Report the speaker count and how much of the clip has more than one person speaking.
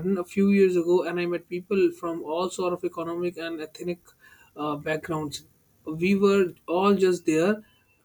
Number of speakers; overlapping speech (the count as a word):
one, no overlap